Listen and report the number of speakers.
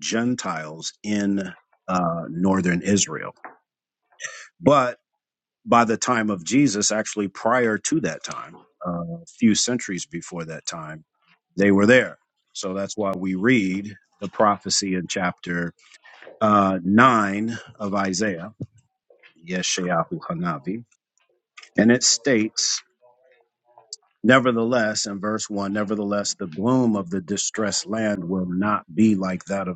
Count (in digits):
1